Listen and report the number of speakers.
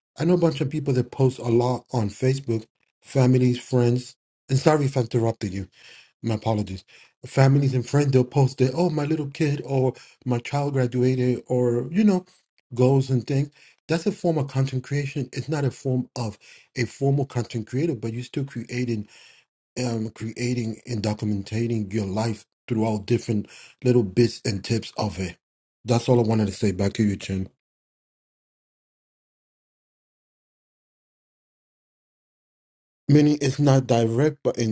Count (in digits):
1